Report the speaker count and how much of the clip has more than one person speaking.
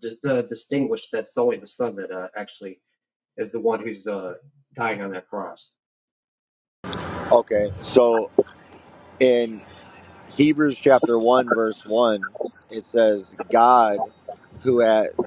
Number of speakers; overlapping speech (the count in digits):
2, no overlap